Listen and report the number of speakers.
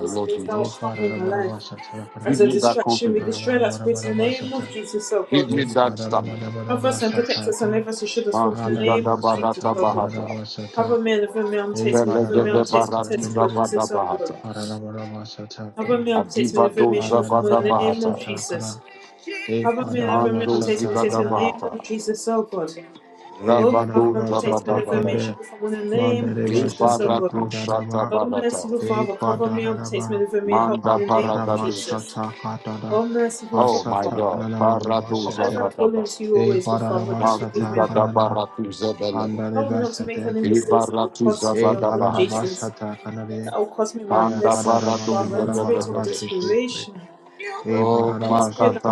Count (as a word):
three